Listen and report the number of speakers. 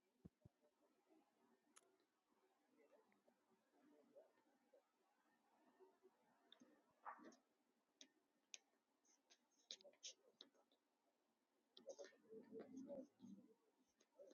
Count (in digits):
0